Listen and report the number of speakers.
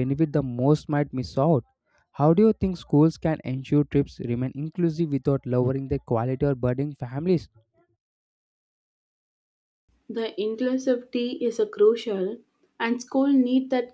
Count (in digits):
2